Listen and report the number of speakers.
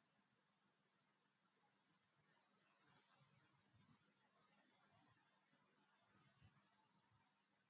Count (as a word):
zero